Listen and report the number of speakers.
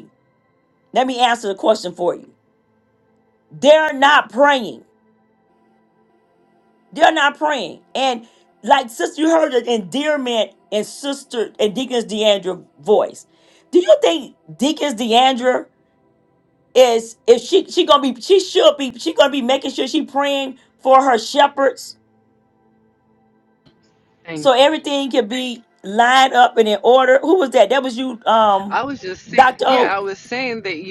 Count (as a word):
two